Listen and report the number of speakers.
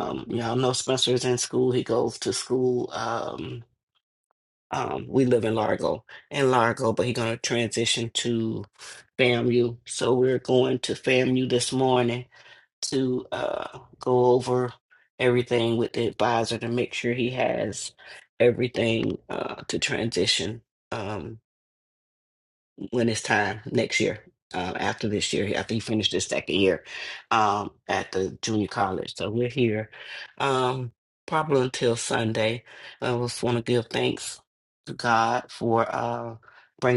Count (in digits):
1